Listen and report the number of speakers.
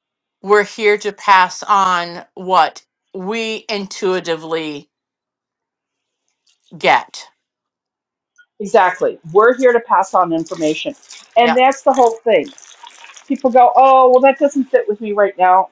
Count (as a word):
two